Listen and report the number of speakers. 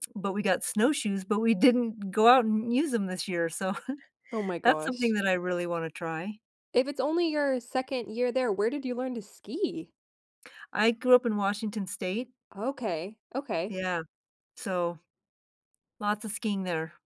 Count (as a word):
two